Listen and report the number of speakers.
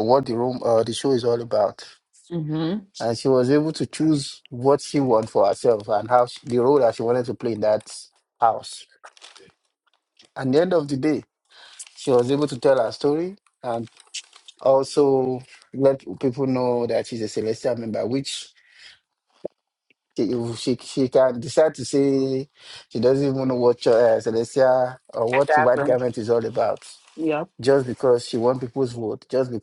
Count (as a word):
two